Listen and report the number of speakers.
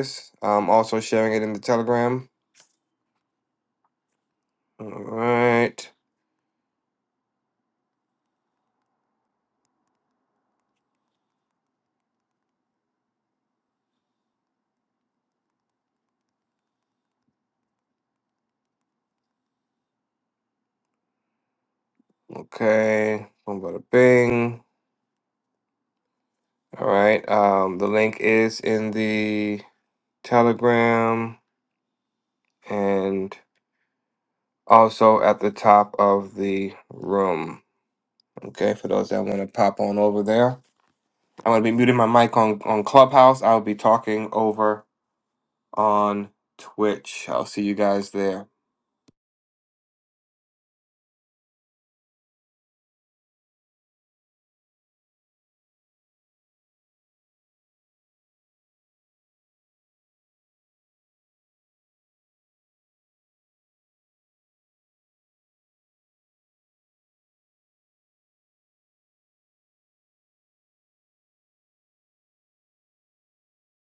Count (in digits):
1